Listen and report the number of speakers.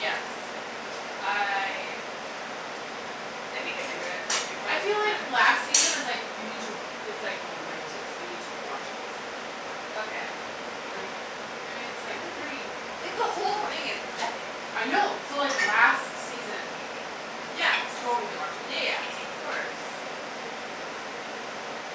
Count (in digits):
2